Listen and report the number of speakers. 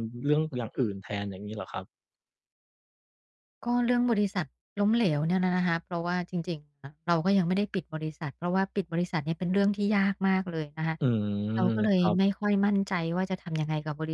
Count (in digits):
2